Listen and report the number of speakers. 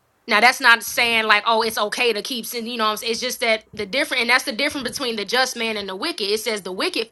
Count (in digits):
1